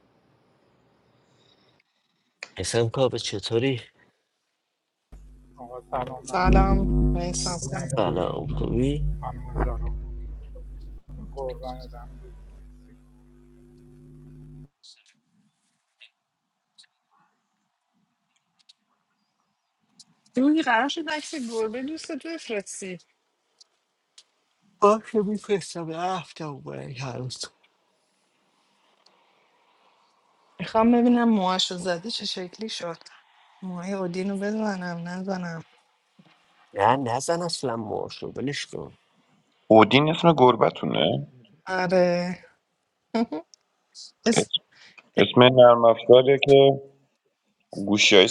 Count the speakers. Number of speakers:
4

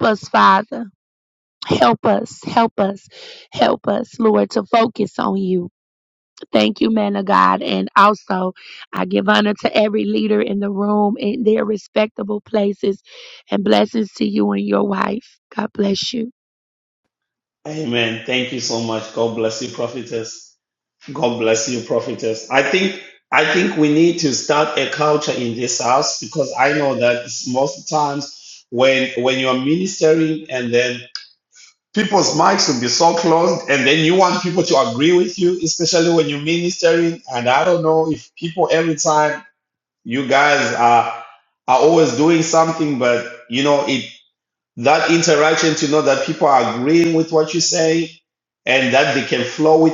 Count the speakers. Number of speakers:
2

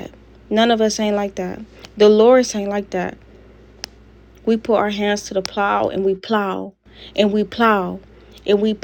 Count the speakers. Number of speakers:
1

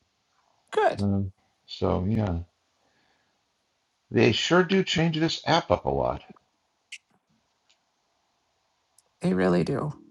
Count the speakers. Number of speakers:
2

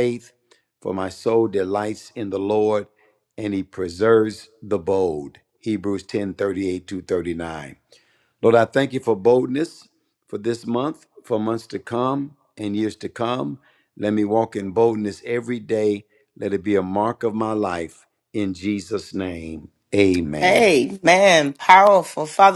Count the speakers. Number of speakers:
2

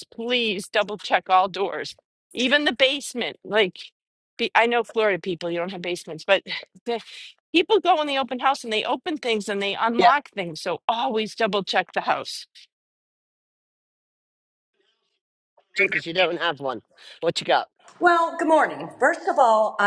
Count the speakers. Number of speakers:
3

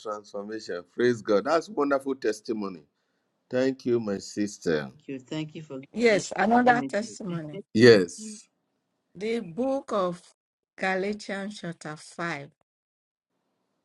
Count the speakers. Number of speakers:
3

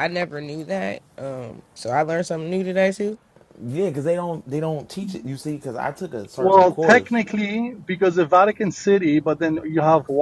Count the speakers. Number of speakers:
3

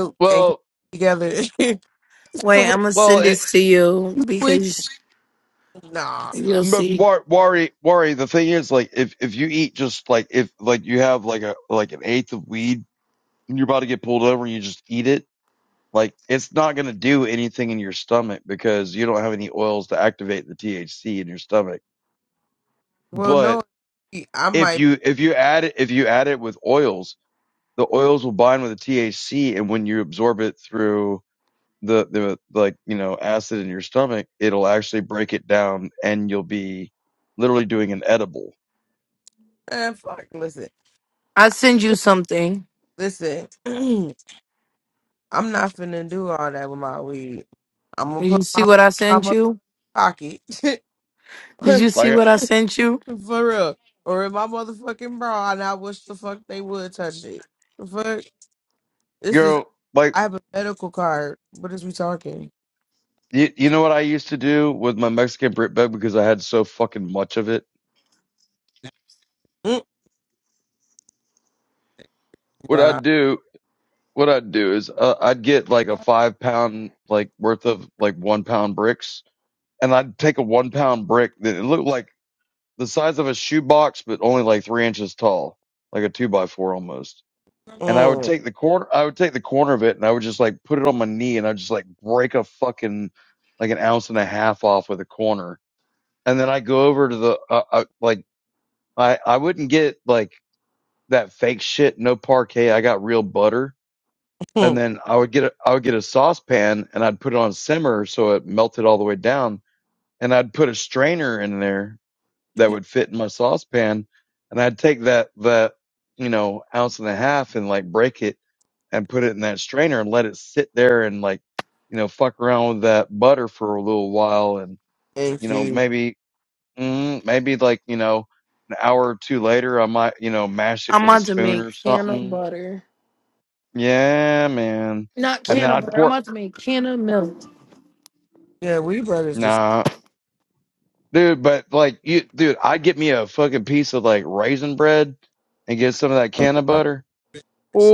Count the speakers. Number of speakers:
3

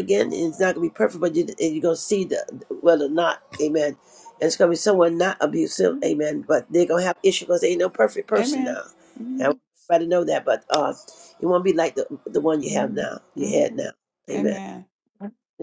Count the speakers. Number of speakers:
2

